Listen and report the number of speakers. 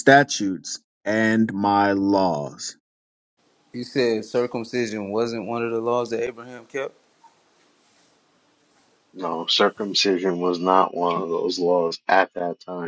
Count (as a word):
three